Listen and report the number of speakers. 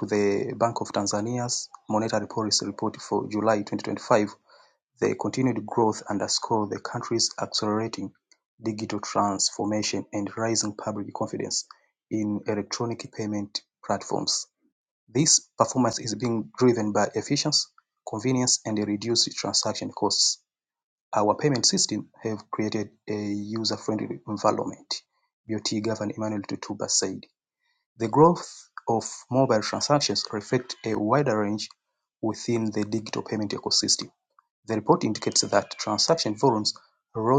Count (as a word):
one